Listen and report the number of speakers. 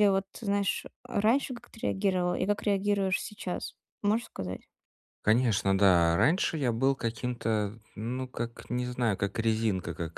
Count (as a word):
two